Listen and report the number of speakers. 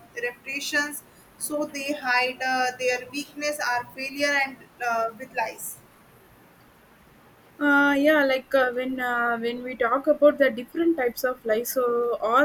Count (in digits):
2